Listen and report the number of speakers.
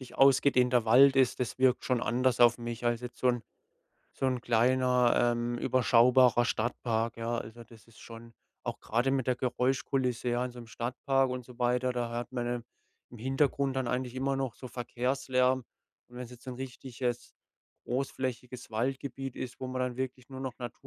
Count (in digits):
1